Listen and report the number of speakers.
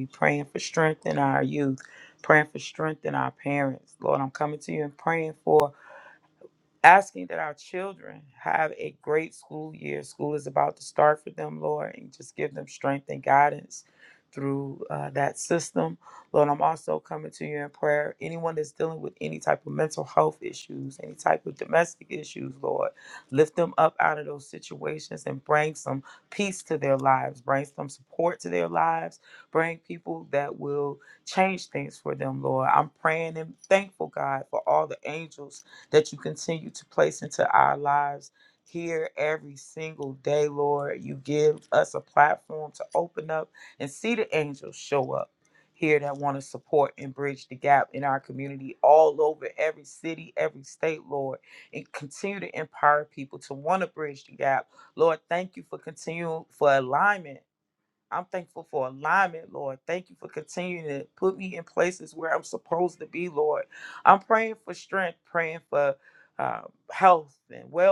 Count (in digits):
1